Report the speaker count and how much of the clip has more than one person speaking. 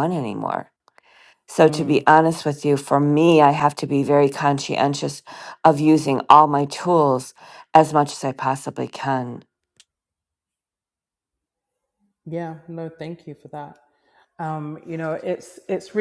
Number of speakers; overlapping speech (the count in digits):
2, about 3%